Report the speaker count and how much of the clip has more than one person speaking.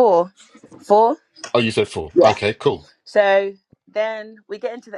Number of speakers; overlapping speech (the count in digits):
2, about 4%